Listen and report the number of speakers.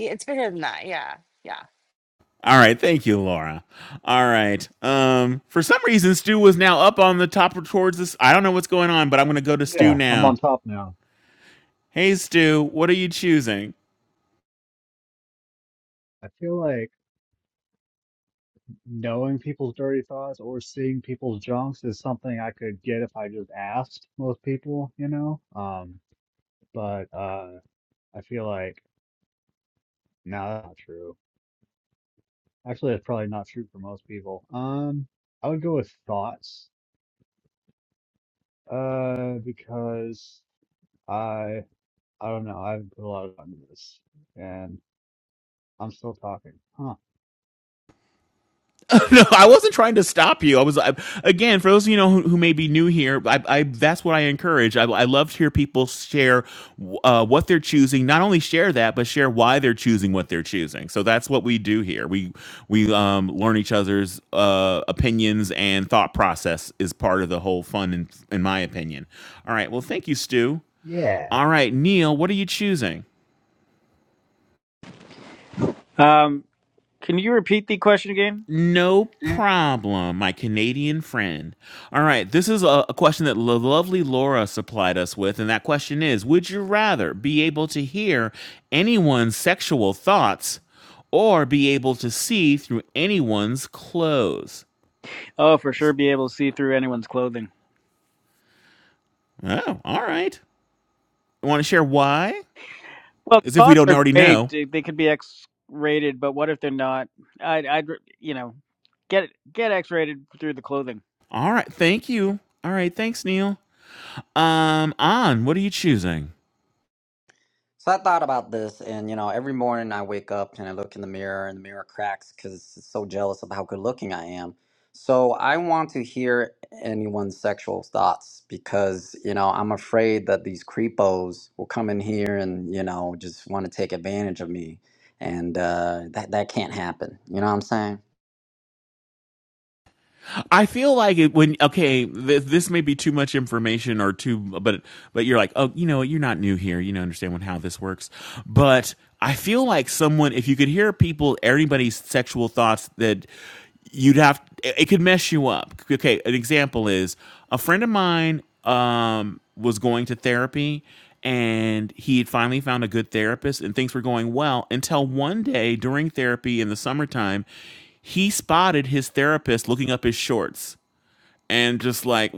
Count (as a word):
five